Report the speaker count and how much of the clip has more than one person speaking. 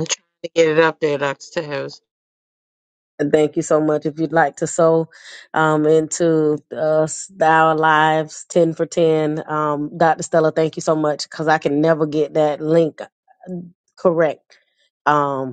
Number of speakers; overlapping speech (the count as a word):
two, no overlap